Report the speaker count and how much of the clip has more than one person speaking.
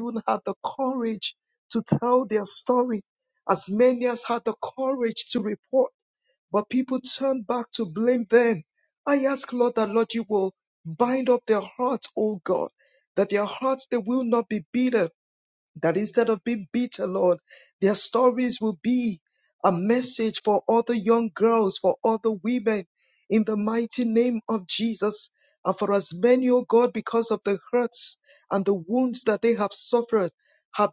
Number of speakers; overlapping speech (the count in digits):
1, no overlap